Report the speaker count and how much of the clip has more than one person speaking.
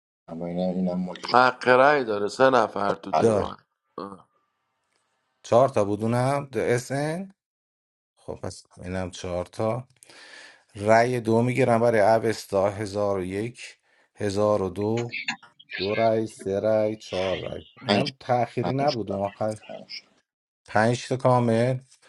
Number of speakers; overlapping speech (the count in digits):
3, about 5%